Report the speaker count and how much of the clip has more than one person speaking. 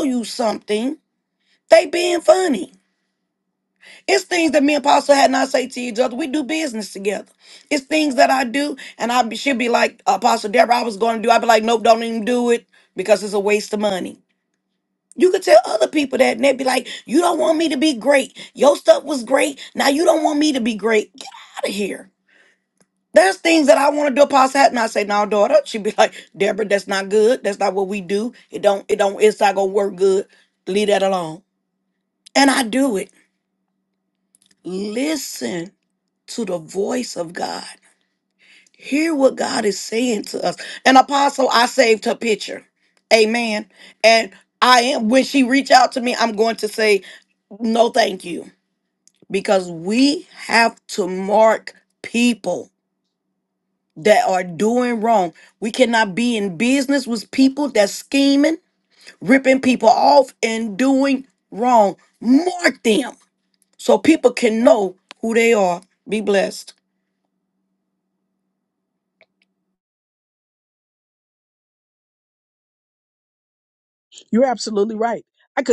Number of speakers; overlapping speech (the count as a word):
two, no overlap